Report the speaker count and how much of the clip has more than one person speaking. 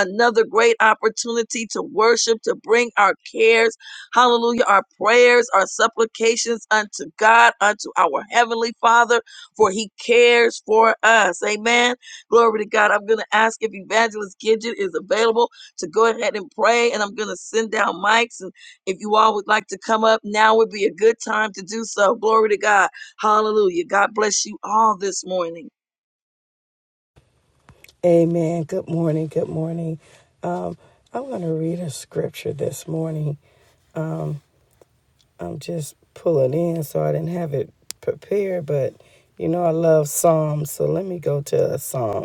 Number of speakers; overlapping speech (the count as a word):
two, no overlap